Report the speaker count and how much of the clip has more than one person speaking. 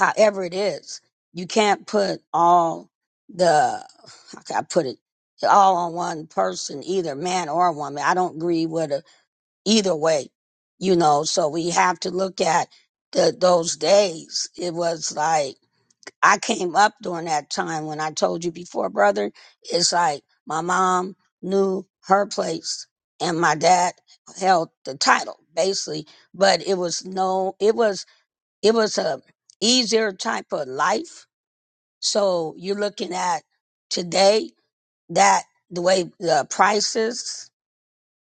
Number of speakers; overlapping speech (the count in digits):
1, no overlap